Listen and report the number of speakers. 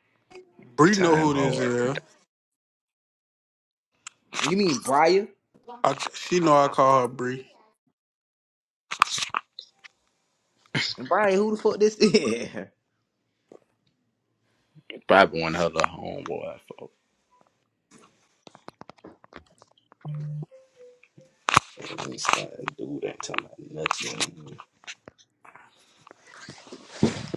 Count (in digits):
3